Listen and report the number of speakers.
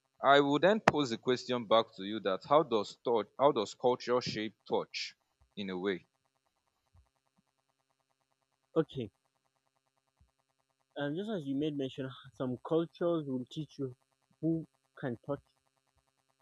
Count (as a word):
two